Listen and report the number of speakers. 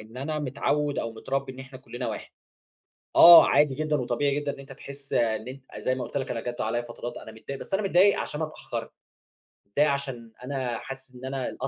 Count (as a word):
one